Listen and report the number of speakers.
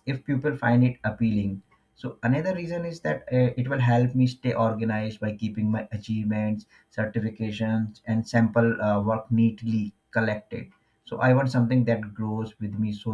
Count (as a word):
one